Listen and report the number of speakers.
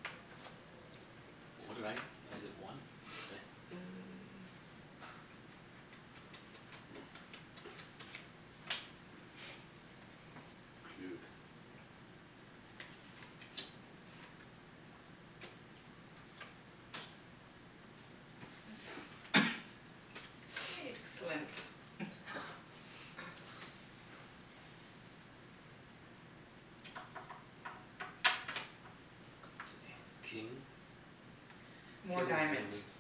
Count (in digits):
2